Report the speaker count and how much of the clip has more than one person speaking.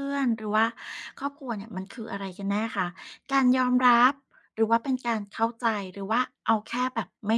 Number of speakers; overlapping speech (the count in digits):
1, no overlap